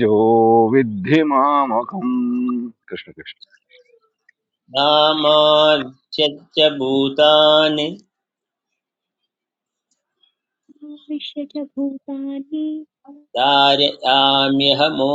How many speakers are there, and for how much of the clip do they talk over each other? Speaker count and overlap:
3, no overlap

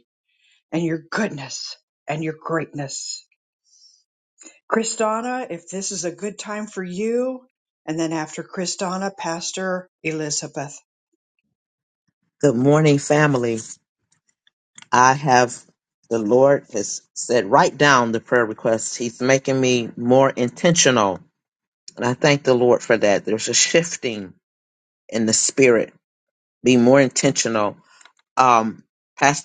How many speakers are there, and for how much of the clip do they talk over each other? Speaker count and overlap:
2, no overlap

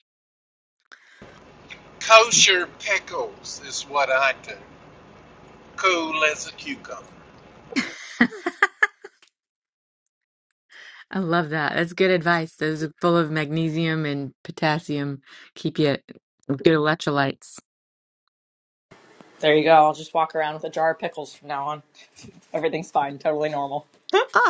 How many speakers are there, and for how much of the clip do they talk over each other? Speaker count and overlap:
3, no overlap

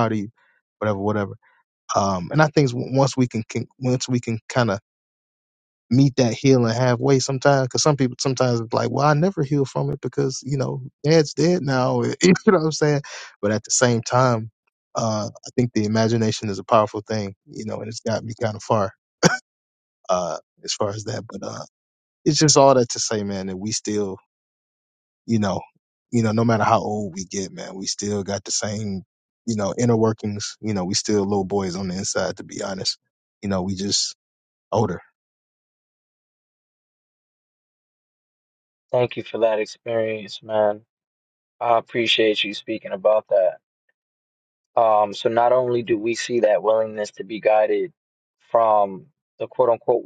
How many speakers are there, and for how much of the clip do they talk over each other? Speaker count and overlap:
2, no overlap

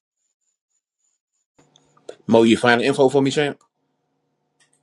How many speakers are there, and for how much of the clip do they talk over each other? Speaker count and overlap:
1, no overlap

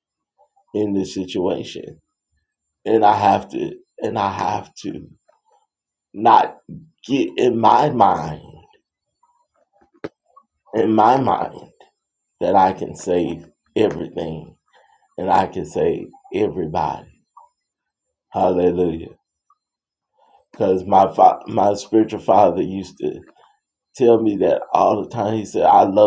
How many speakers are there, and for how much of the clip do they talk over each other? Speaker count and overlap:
1, no overlap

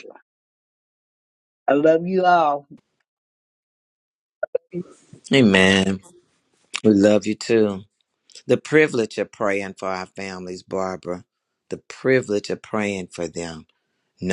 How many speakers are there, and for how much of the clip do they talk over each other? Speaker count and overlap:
2, no overlap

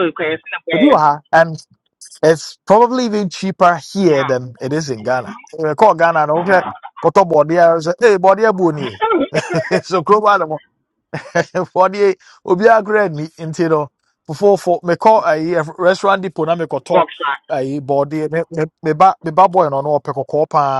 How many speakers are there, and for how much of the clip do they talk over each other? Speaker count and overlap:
2, about 3%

